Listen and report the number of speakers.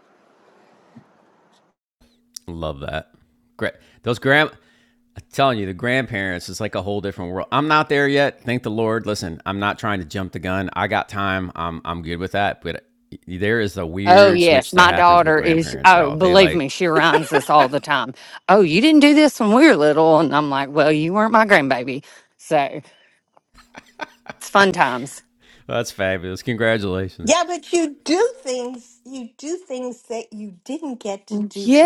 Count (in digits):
3